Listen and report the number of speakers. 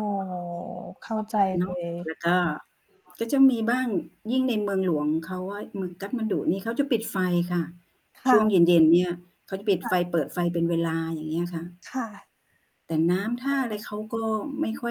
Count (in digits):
2